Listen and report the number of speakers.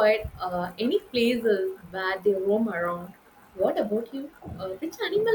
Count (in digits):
1